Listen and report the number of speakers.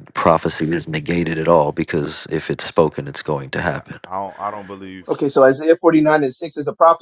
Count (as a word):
three